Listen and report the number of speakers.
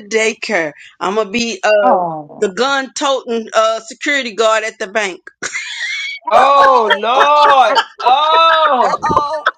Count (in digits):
3